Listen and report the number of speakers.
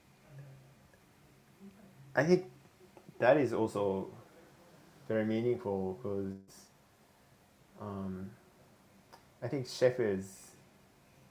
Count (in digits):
1